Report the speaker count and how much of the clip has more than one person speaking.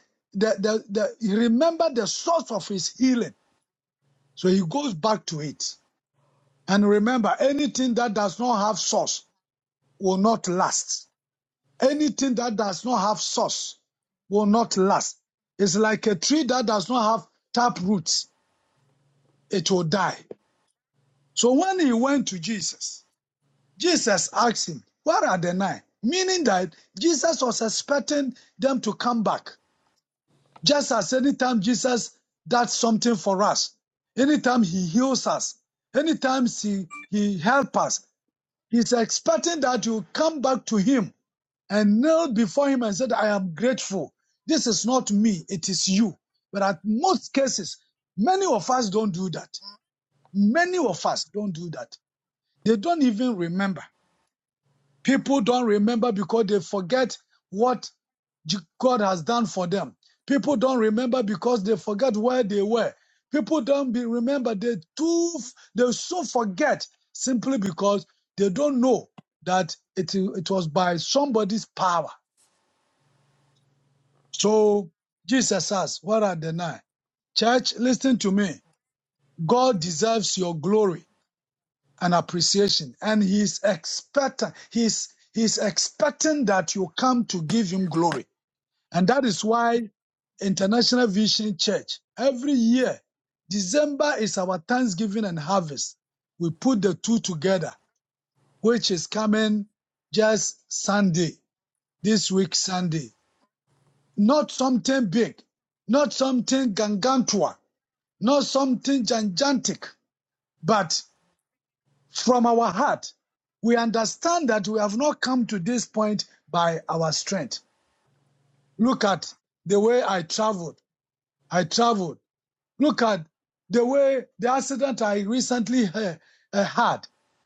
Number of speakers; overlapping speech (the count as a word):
one, no overlap